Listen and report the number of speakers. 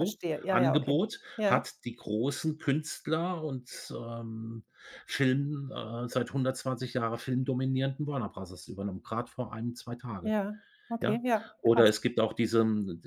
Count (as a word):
two